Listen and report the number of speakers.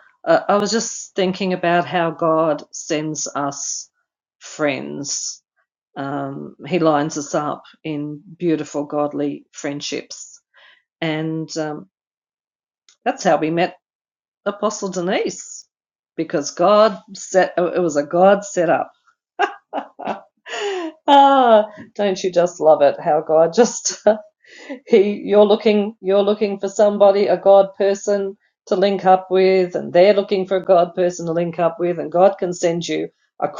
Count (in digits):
1